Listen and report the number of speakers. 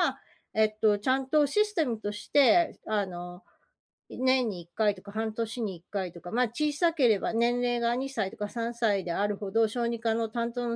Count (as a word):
one